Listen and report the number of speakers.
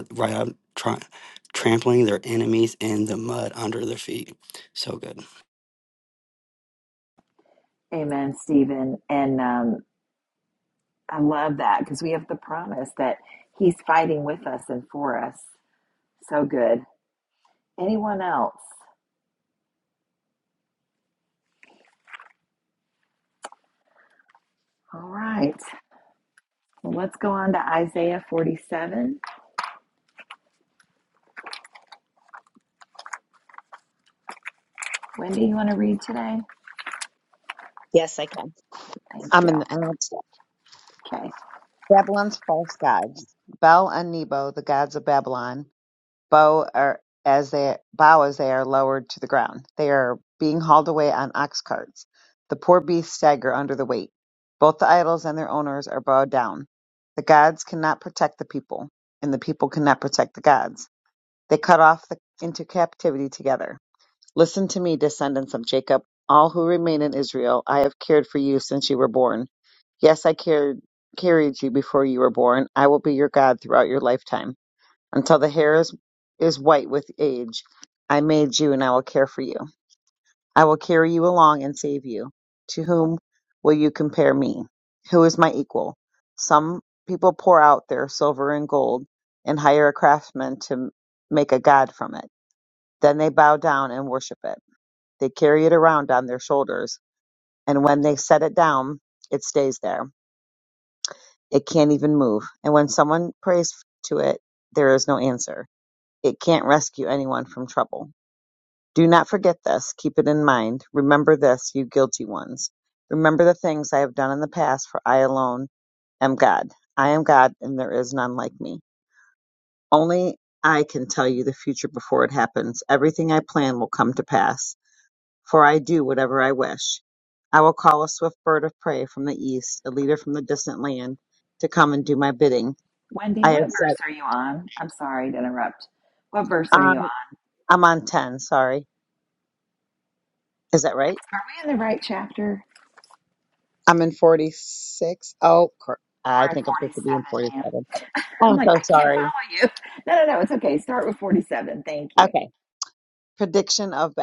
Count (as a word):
three